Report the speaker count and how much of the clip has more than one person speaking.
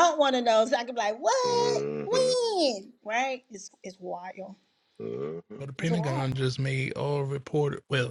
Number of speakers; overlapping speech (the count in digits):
3, about 17%